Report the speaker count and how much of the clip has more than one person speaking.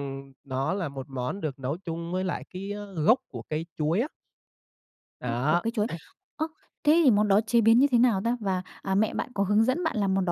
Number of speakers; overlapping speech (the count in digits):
2, about 3%